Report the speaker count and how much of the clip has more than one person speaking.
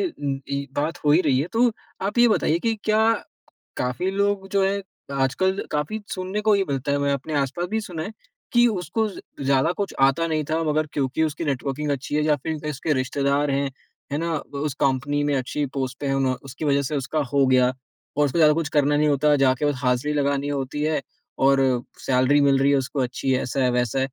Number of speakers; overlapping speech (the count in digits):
1, no overlap